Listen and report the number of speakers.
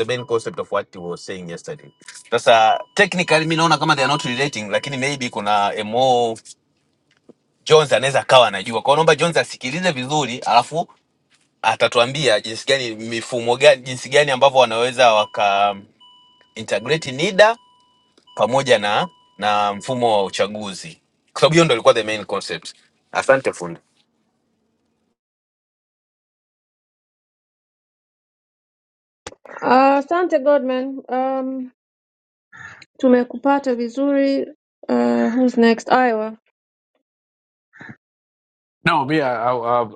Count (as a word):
three